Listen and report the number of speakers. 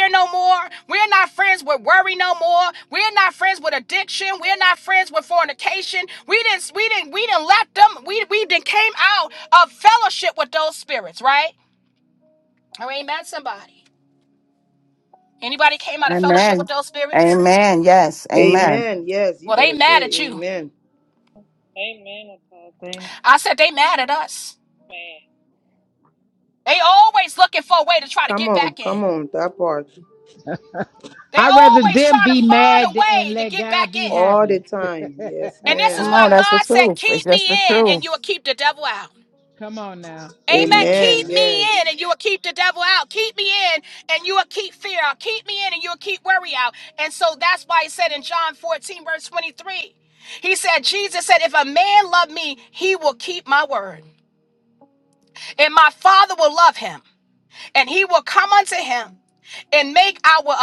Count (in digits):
5